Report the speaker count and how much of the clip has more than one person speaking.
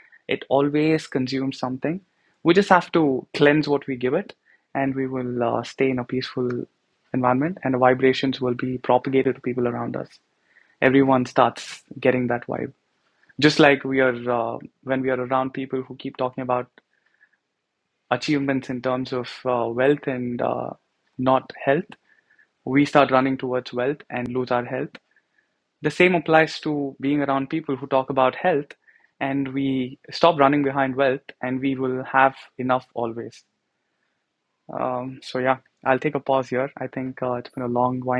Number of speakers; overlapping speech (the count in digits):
1, no overlap